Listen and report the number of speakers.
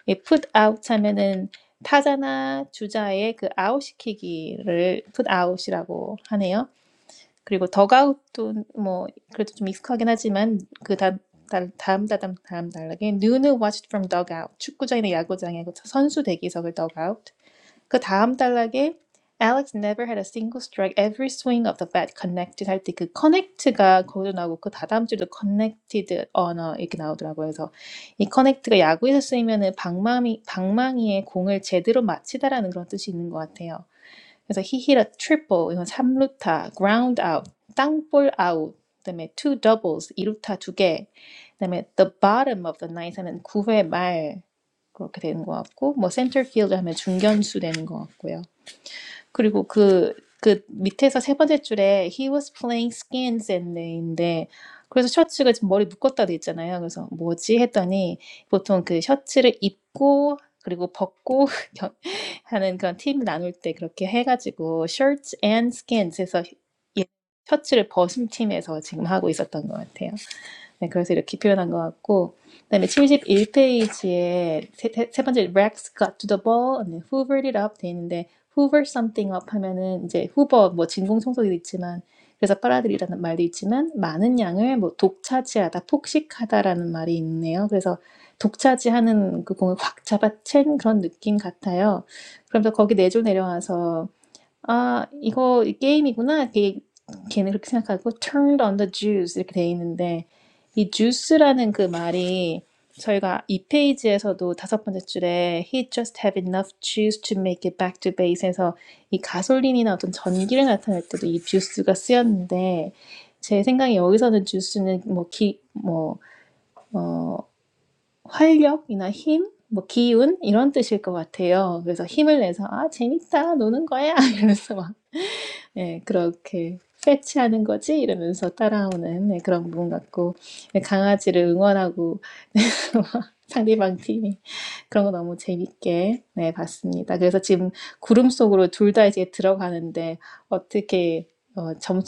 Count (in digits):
1